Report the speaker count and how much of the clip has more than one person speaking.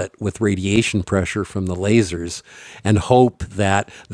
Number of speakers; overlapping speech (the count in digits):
1, no overlap